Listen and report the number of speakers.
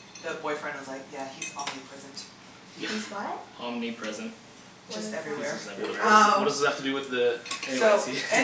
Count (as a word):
four